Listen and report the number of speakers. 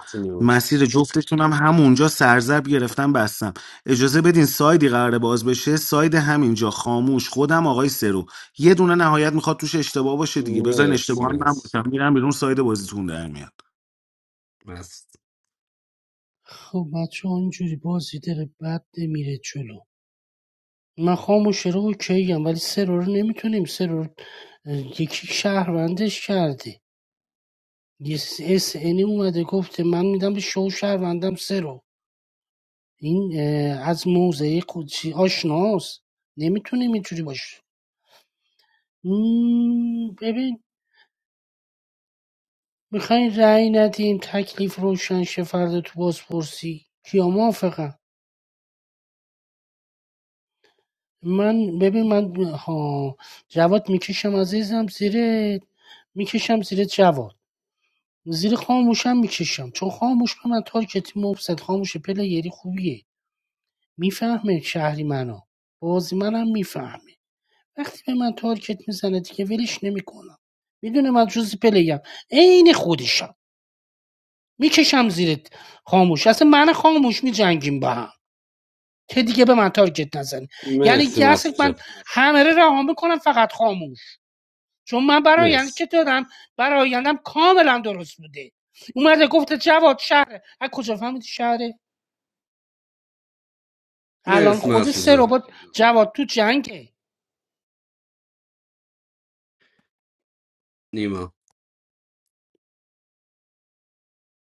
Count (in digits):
3